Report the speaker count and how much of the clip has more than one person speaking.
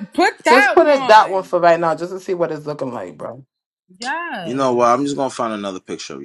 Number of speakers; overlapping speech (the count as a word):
three, about 21%